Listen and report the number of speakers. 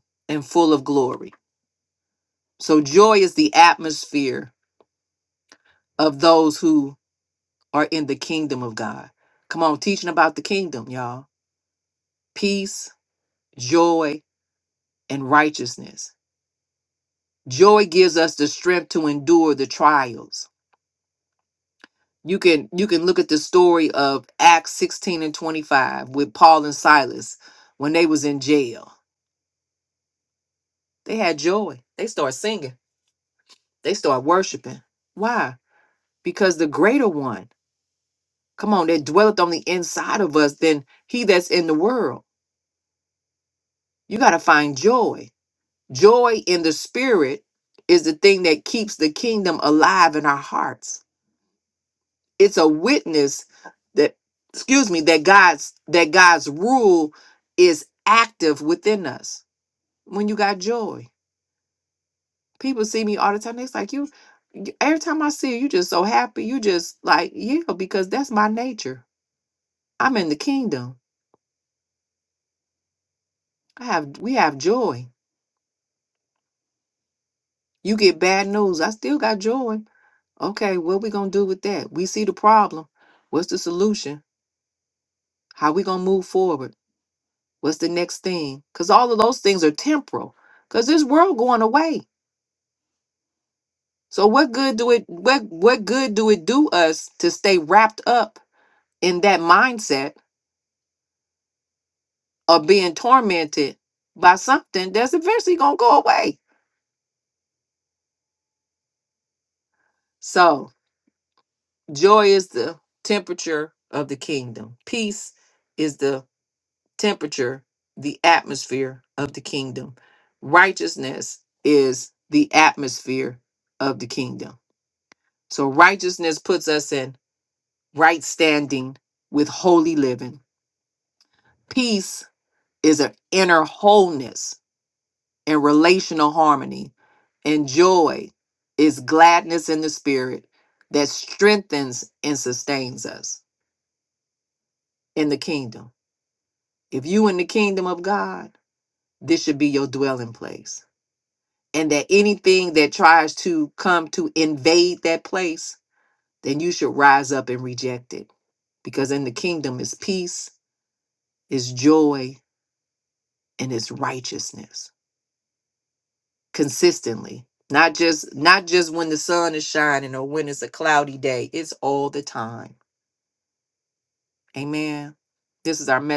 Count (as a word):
one